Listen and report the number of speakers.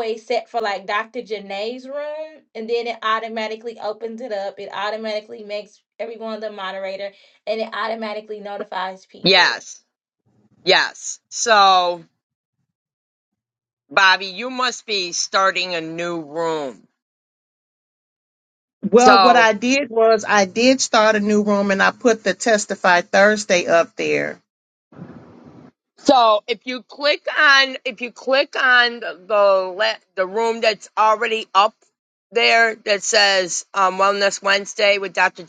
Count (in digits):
3